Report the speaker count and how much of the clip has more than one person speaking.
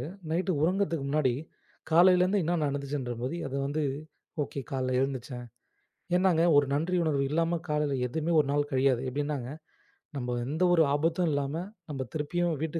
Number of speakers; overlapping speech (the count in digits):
1, no overlap